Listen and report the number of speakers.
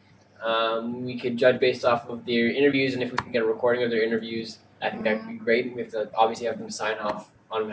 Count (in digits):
1